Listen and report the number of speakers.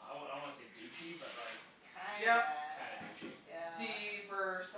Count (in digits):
3